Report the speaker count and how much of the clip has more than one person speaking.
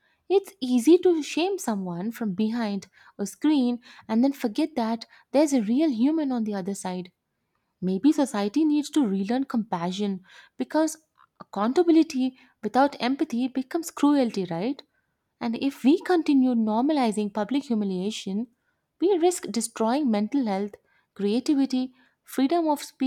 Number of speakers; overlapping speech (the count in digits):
1, no overlap